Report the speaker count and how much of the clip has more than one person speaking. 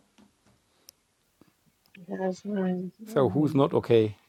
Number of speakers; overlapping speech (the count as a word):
two, about 13%